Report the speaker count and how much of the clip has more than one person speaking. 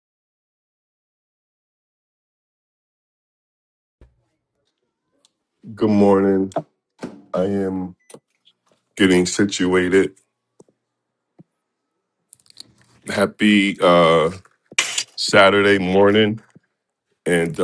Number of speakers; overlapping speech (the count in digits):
1, no overlap